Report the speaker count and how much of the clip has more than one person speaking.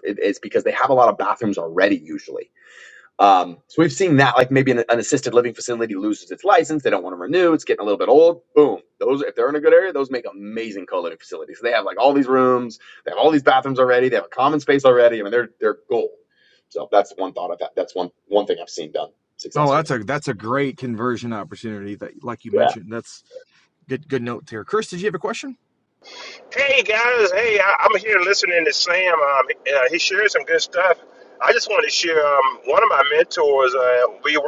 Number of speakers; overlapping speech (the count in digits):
3, about 2%